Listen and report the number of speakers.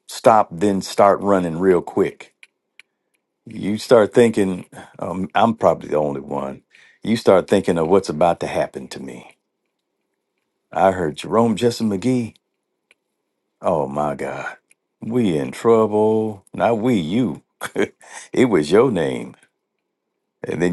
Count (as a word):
one